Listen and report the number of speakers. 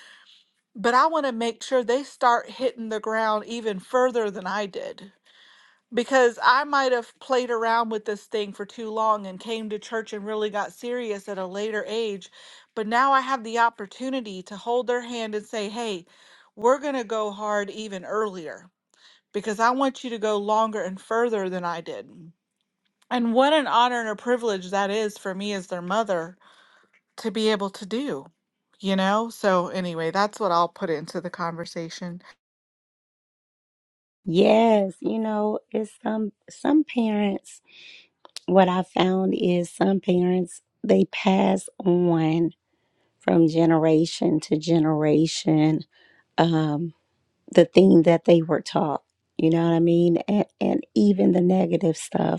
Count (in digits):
2